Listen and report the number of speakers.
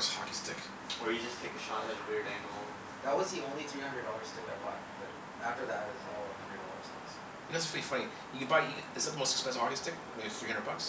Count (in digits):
3